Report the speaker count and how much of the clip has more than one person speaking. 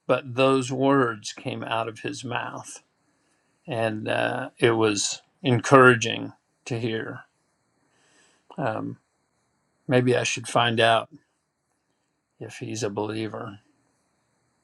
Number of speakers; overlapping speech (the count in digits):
1, no overlap